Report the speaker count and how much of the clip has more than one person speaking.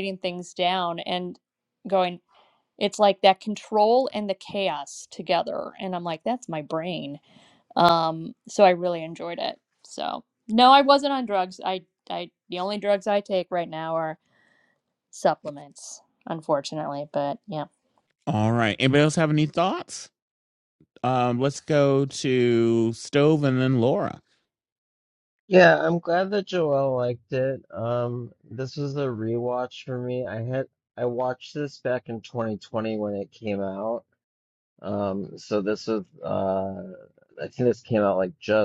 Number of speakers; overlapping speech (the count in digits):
3, no overlap